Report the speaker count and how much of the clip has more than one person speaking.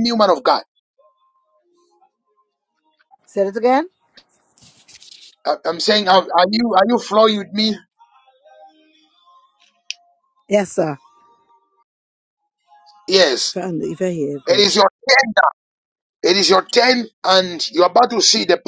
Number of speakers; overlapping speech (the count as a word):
two, about 1%